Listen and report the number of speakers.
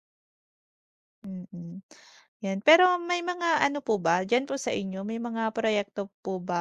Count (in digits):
1